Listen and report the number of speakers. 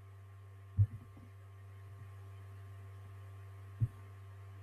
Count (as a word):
zero